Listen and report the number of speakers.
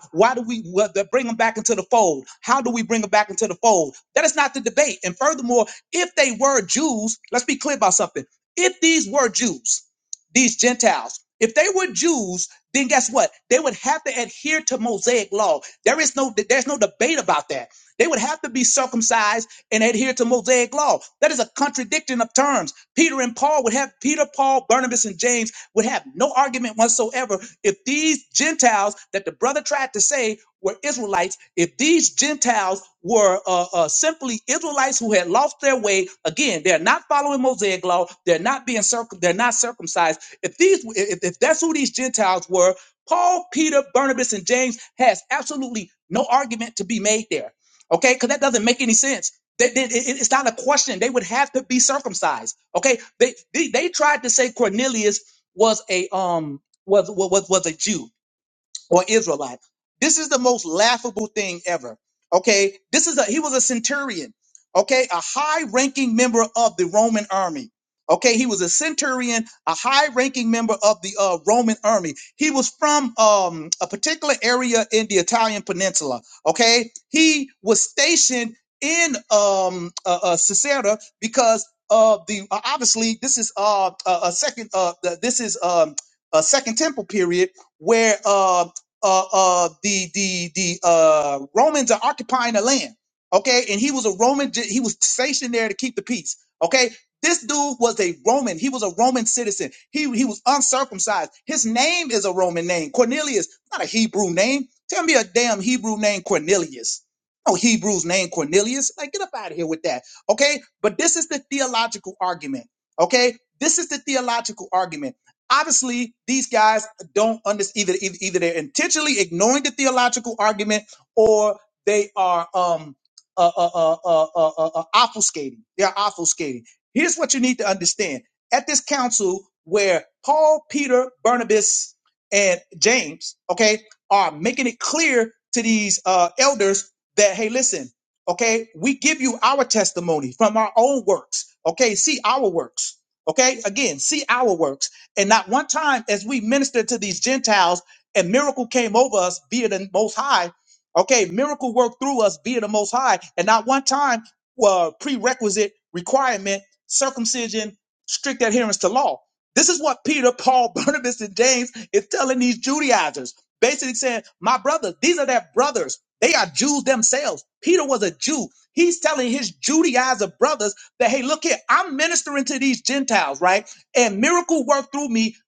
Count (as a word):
one